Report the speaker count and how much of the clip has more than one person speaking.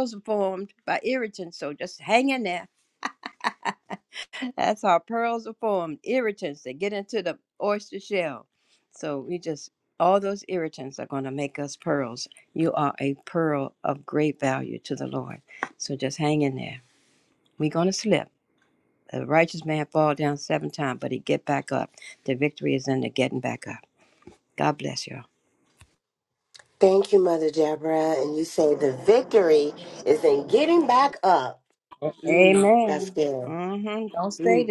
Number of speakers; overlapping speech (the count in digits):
2, about 4%